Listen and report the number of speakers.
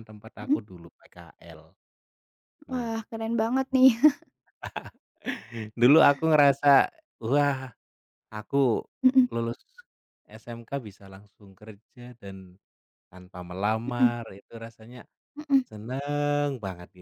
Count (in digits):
2